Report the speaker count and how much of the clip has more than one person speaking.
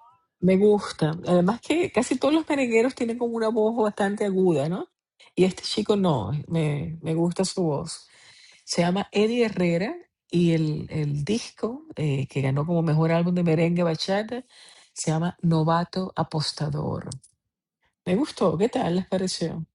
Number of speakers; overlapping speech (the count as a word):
one, no overlap